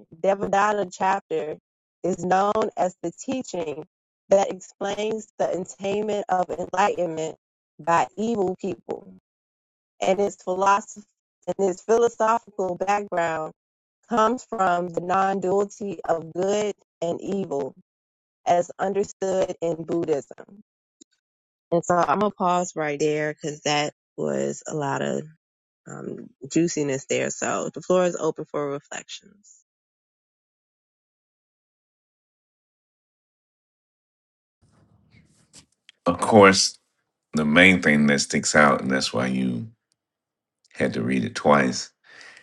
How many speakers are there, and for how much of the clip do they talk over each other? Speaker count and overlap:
2, no overlap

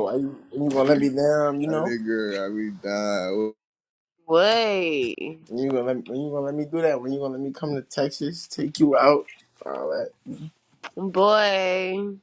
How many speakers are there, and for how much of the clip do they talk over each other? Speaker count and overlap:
3, about 2%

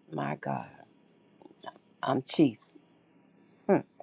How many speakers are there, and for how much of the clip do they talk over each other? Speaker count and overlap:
1, no overlap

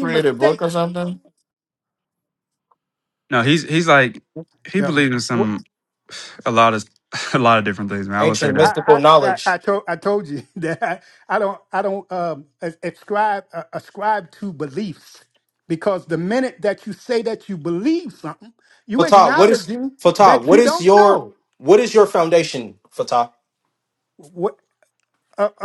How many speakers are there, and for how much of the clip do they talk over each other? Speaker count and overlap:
4, about 15%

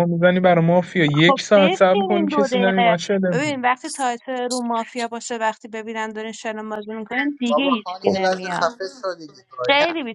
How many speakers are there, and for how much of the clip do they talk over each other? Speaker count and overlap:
3, about 34%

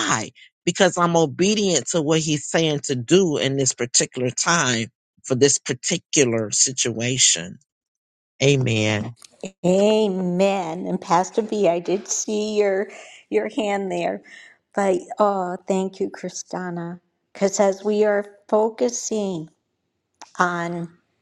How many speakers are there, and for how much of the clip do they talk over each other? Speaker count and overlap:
2, no overlap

